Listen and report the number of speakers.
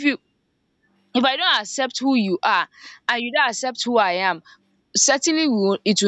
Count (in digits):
1